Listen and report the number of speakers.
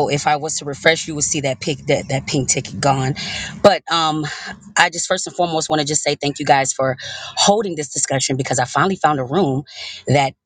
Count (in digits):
1